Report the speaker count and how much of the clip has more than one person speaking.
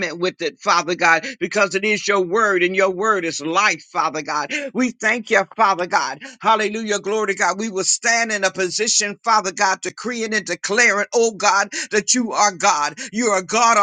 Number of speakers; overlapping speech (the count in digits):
1, no overlap